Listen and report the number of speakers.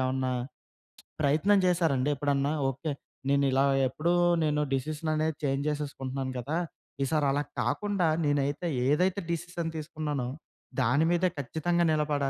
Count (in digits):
1